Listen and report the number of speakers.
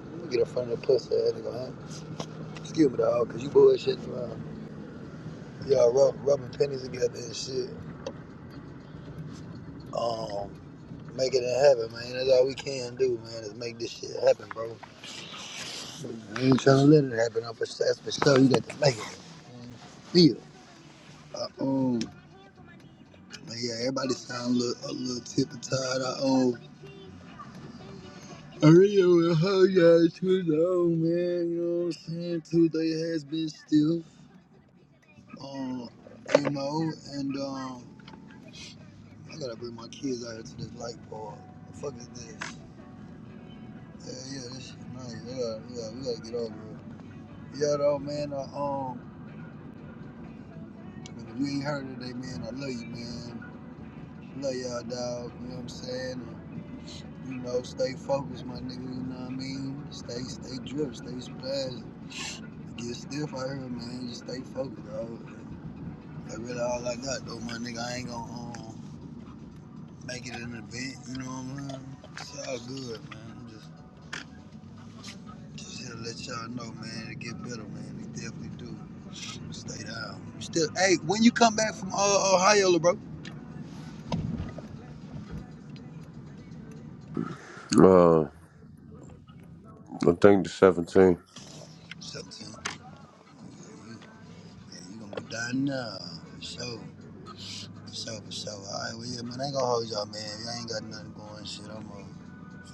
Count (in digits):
2